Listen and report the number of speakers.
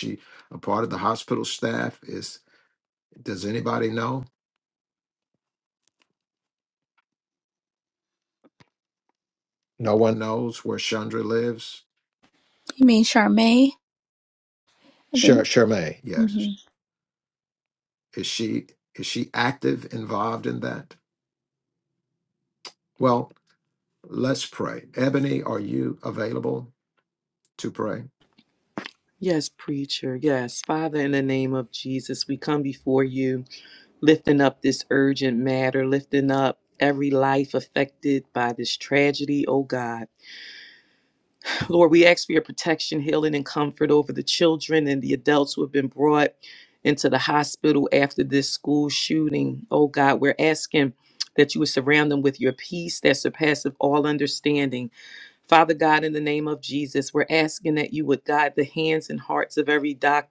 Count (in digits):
3